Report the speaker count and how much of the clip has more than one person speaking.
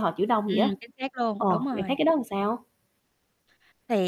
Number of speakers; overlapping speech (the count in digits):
2, about 19%